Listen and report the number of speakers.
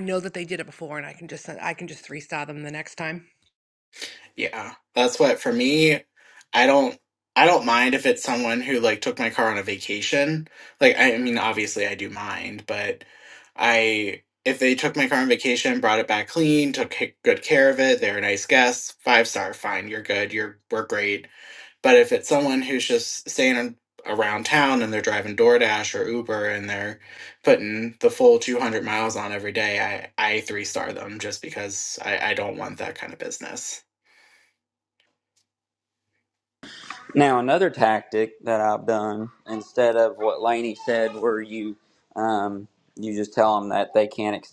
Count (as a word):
three